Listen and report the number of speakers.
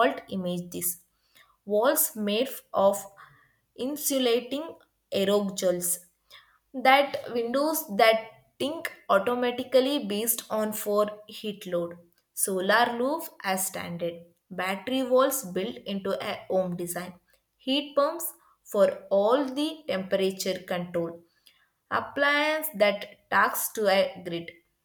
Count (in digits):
1